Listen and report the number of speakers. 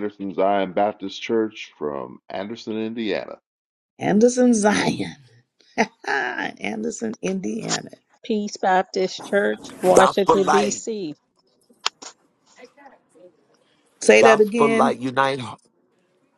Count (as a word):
four